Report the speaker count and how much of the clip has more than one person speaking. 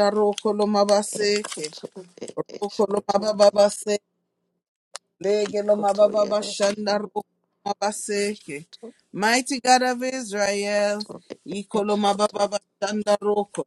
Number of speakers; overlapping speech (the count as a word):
two, about 24%